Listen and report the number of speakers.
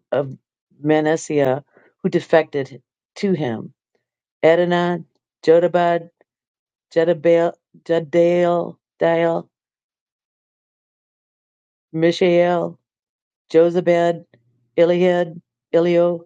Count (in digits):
1